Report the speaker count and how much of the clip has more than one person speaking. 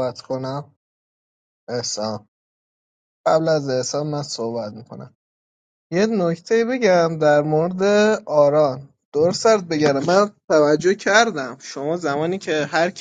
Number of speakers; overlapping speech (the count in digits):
1, no overlap